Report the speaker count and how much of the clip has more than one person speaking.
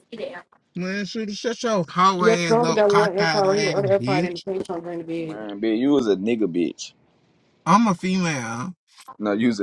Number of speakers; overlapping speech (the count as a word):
three, about 22%